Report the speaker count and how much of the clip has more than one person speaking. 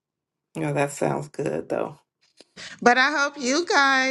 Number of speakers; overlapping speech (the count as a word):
two, no overlap